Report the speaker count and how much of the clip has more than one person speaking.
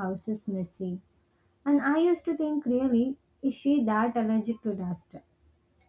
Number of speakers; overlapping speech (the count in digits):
1, no overlap